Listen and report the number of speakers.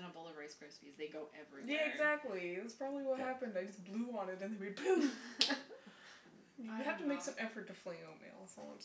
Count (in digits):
2